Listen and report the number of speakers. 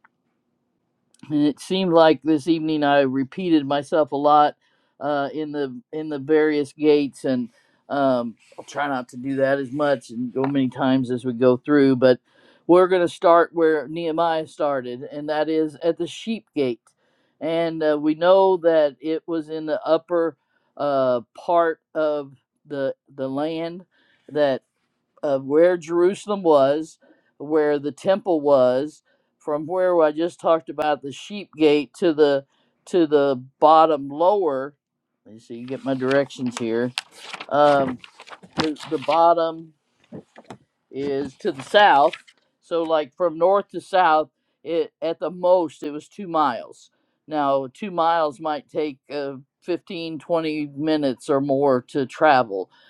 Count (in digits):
1